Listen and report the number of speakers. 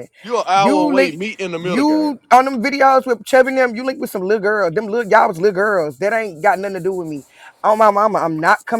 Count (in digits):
2